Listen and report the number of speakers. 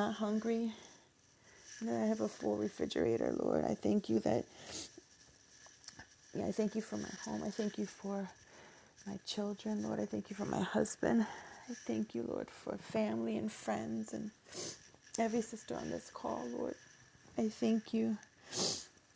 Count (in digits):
1